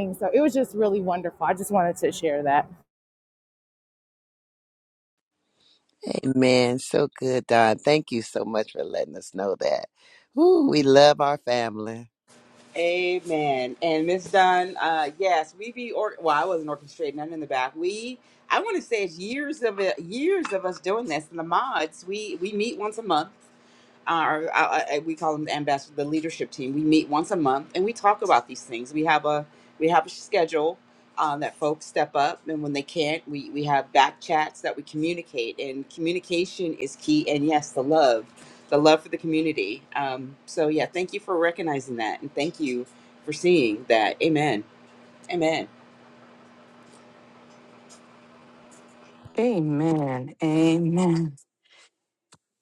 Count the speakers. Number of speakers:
four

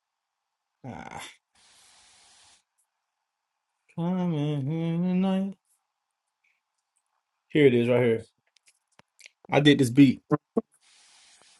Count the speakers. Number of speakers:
one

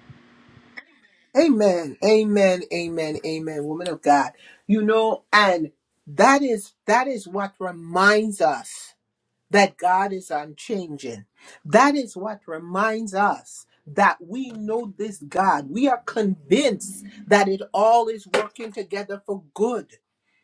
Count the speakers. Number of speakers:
one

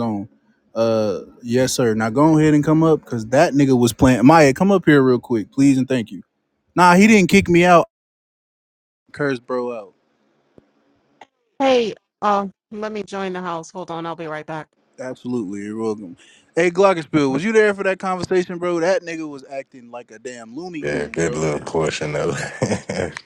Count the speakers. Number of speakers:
three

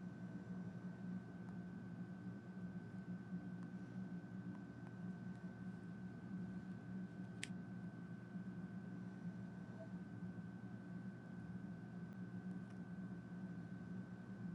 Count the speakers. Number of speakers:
zero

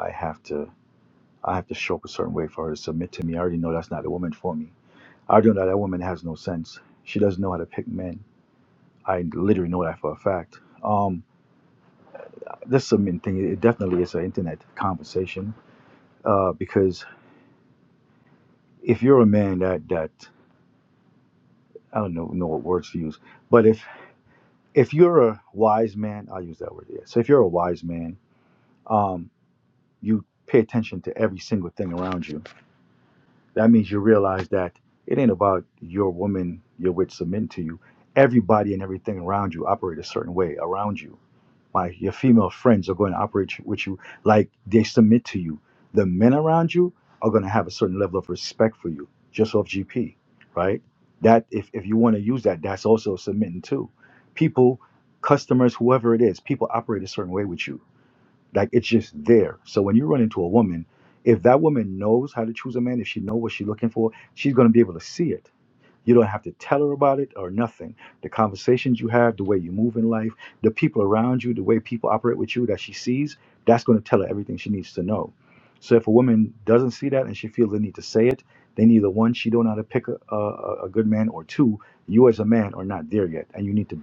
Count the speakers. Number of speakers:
one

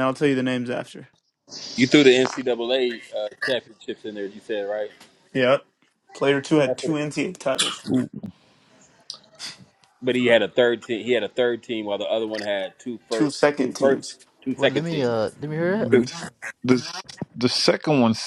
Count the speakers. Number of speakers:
four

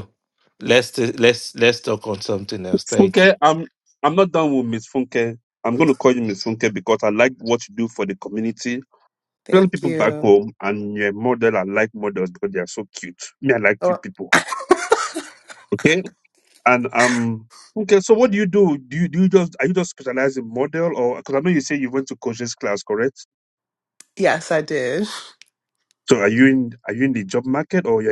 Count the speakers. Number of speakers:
three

